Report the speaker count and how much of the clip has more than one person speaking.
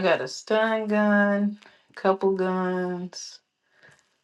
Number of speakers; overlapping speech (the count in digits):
1, no overlap